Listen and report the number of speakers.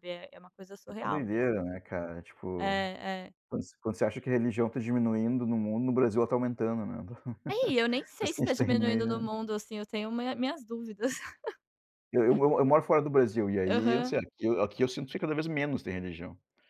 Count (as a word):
two